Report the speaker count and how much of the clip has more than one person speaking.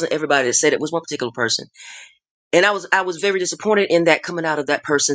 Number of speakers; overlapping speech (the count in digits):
1, no overlap